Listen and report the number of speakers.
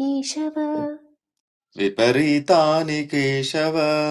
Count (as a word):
two